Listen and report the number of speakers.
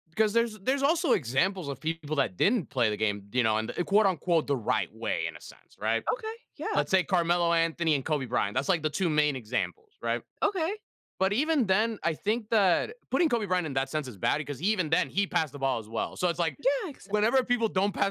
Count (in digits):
2